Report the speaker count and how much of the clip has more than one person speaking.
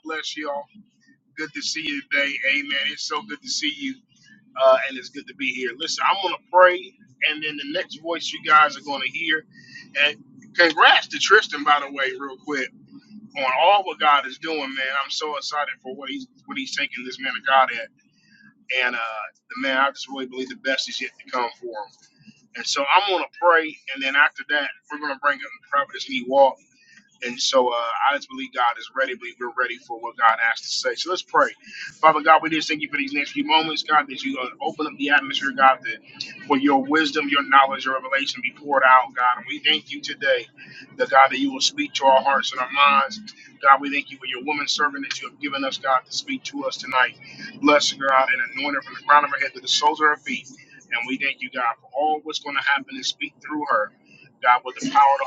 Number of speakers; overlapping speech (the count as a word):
one, no overlap